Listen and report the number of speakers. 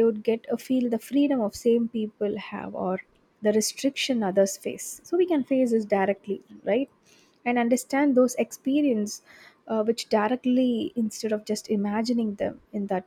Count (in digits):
1